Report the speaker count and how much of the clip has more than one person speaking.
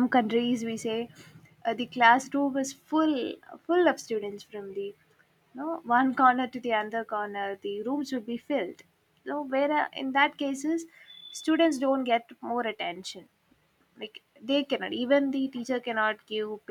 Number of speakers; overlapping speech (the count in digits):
1, no overlap